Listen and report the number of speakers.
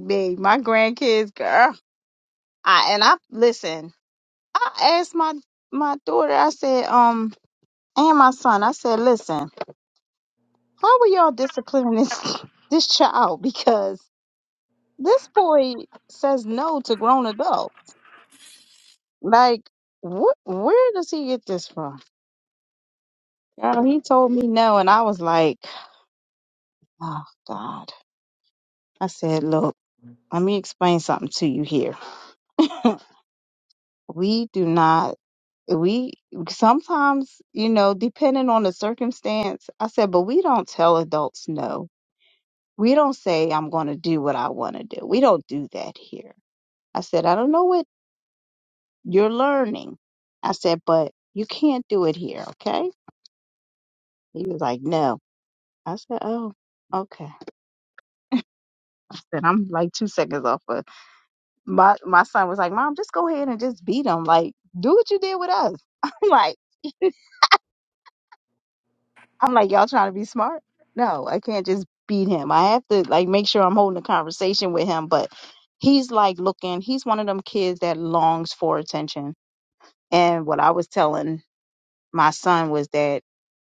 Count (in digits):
1